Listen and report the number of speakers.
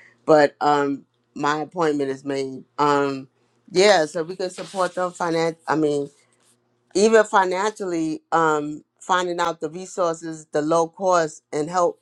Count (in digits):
1